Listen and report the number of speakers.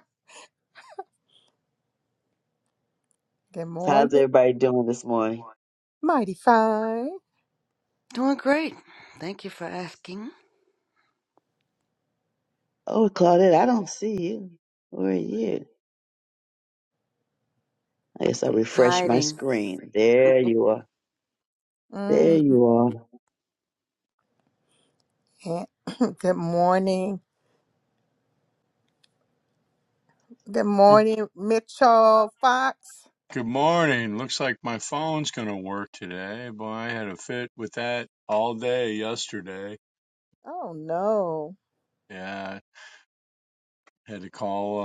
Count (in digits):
4